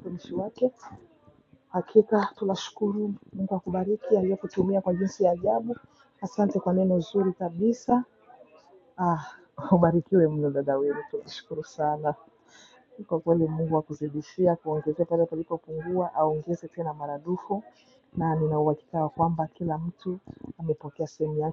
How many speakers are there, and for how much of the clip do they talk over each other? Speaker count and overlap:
one, no overlap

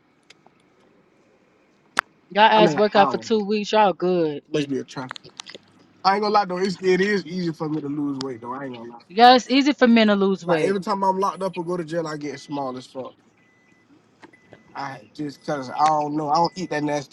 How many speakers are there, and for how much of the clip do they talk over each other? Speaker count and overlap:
two, about 5%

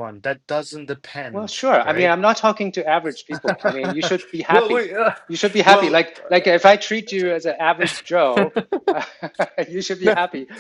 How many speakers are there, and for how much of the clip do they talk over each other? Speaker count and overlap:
two, about 16%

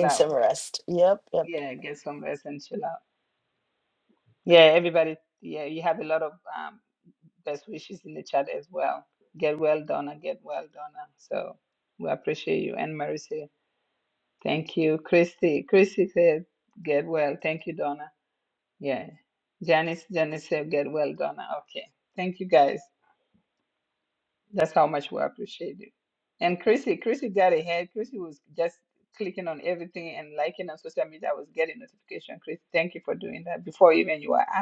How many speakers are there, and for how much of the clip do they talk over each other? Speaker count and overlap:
two, about 1%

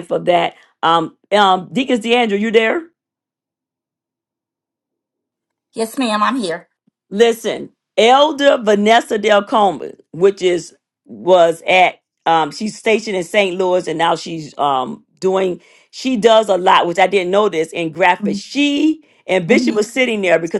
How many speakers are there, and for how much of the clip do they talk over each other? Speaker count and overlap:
two, about 2%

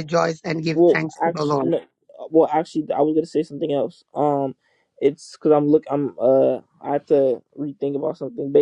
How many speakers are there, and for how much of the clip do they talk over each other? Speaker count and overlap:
two, about 11%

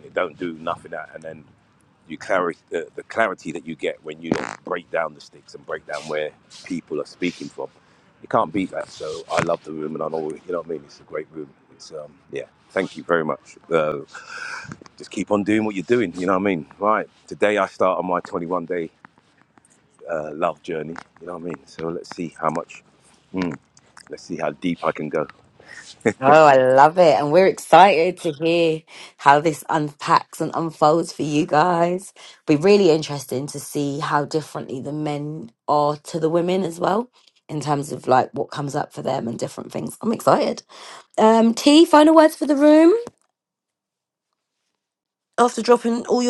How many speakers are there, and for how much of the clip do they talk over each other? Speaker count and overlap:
two, no overlap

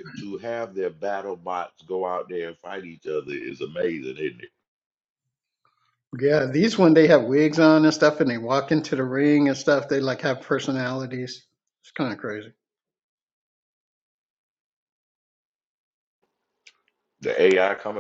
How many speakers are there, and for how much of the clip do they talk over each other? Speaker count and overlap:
two, no overlap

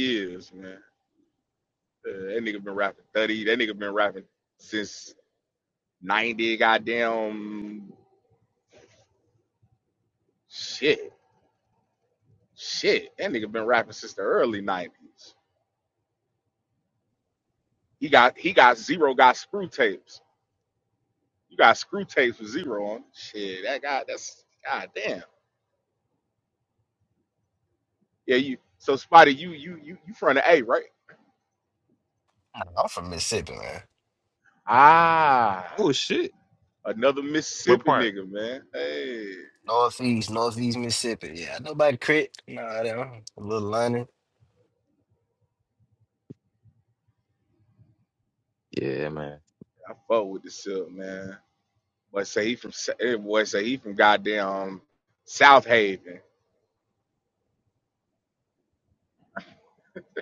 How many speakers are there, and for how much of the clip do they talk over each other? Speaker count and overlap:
three, about 1%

